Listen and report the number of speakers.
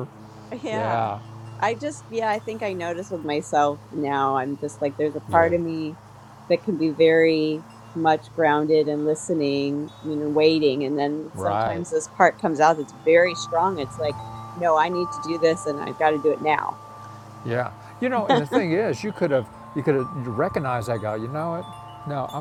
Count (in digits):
2